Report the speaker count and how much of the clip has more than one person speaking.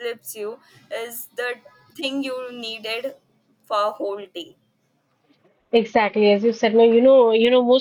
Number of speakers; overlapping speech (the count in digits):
2, no overlap